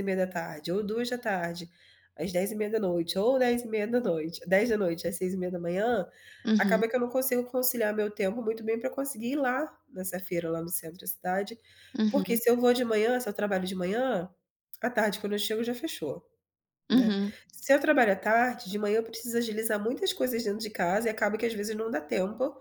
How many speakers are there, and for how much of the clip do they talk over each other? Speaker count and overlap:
two, about 3%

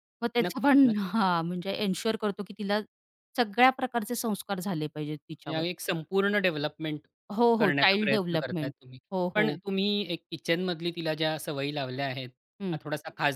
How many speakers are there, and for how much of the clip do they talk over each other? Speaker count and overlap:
two, about 16%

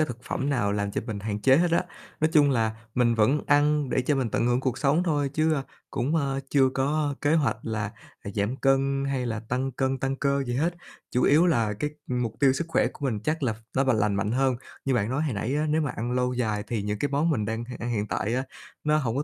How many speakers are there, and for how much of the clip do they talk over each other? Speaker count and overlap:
one, no overlap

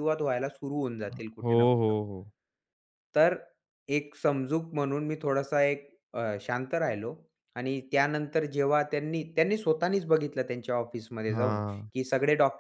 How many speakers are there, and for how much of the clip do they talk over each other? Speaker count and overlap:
two, about 8%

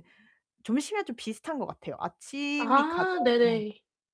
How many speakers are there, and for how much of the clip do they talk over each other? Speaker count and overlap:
two, about 11%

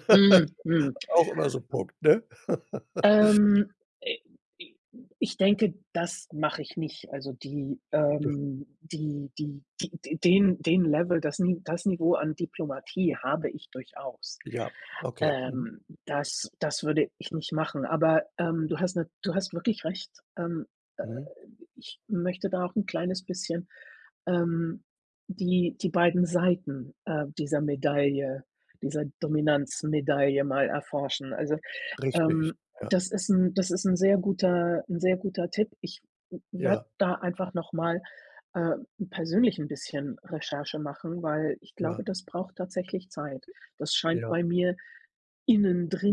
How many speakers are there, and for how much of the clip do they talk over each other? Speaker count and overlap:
two, about 5%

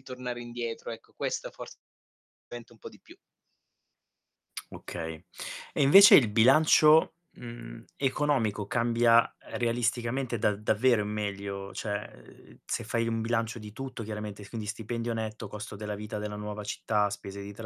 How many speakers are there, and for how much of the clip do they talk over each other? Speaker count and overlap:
two, no overlap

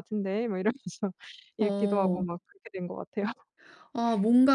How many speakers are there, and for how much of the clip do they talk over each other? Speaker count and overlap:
two, about 15%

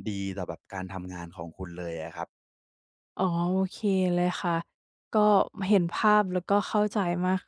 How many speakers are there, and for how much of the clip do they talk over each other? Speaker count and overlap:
two, no overlap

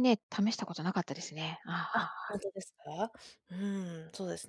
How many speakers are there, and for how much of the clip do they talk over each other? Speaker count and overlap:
two, about 10%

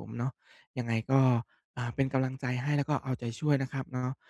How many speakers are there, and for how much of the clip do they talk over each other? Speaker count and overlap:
one, no overlap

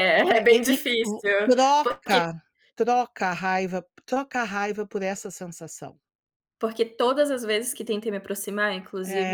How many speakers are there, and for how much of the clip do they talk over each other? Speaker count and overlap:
two, about 15%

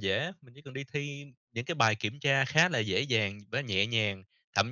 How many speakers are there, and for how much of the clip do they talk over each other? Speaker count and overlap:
one, no overlap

